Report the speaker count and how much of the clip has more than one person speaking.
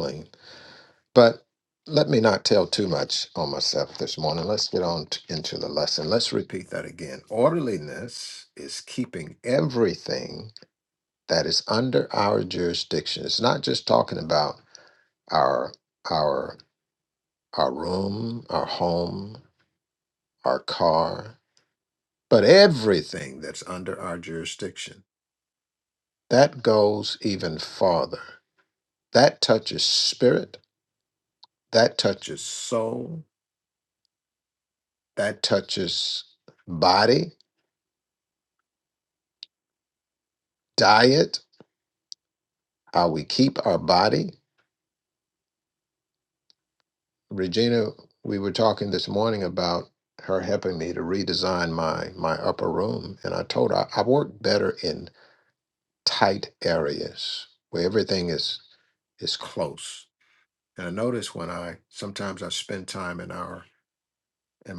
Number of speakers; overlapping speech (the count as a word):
one, no overlap